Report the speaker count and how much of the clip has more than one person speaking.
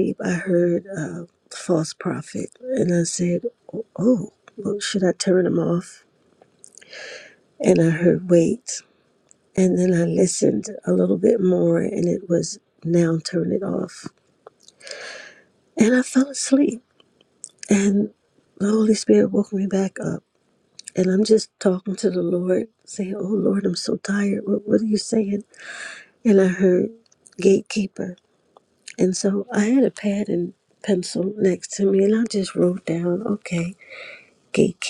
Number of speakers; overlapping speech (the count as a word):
one, no overlap